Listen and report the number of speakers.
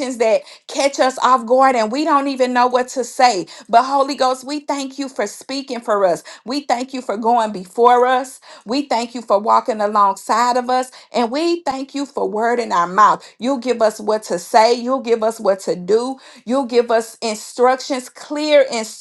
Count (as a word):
one